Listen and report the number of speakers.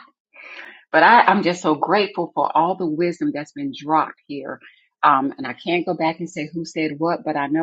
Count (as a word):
one